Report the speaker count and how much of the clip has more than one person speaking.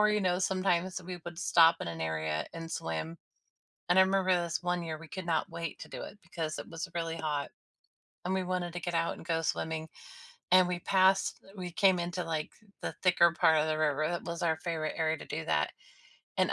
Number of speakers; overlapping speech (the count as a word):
one, no overlap